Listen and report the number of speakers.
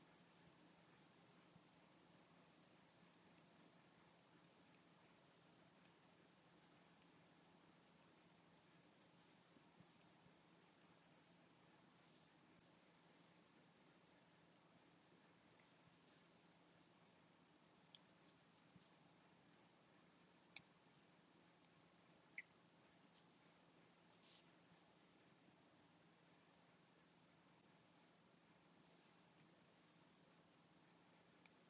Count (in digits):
0